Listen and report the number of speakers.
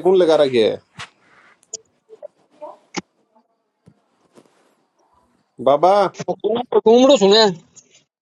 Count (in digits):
2